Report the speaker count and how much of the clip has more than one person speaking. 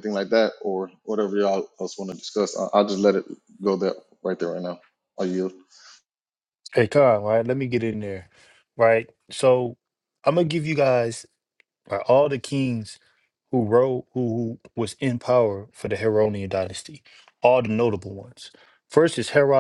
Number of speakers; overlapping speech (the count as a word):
two, no overlap